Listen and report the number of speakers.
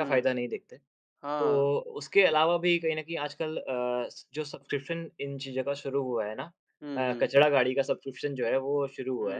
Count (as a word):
two